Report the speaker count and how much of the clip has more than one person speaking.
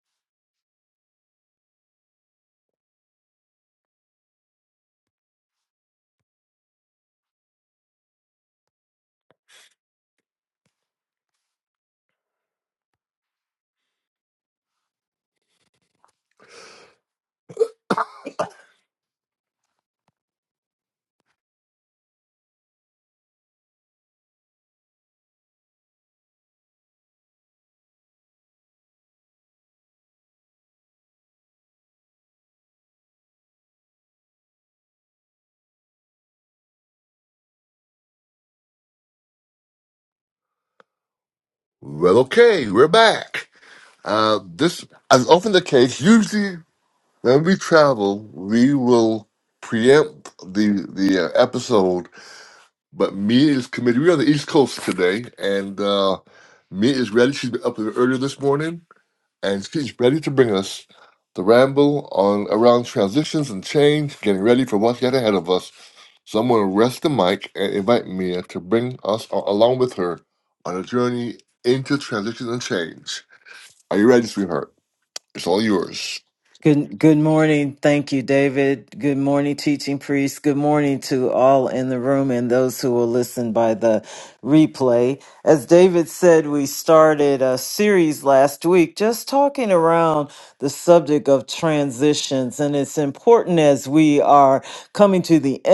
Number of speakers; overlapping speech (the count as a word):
two, no overlap